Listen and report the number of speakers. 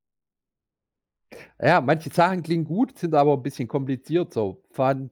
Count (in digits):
1